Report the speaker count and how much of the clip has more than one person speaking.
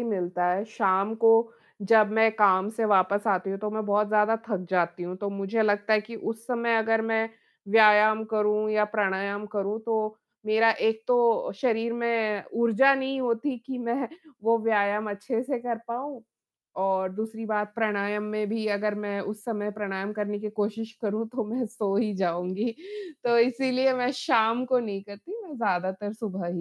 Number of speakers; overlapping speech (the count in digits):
1, no overlap